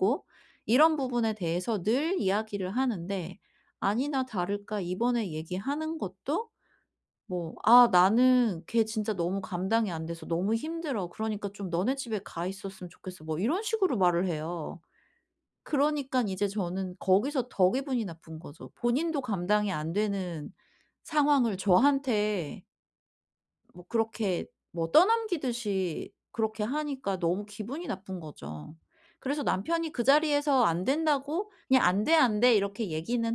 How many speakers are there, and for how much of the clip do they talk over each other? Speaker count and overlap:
one, no overlap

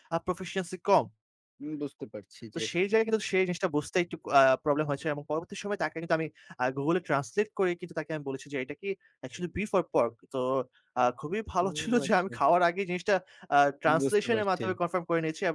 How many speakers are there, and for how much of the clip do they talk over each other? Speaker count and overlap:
two, about 10%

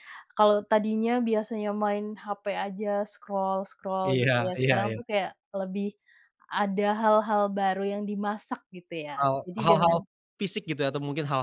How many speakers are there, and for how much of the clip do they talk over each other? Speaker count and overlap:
two, about 16%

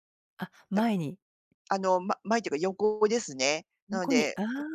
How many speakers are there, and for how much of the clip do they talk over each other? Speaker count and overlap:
two, about 11%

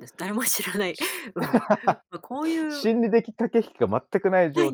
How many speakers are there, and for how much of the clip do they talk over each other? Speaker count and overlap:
two, about 10%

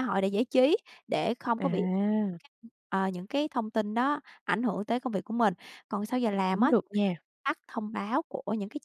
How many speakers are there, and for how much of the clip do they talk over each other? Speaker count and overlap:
two, about 6%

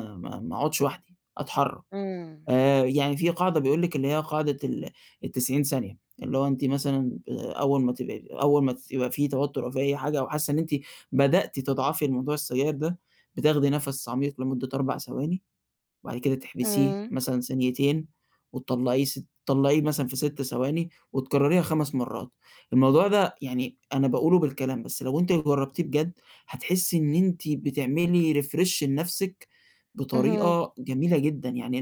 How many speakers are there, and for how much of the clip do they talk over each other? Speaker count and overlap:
two, about 3%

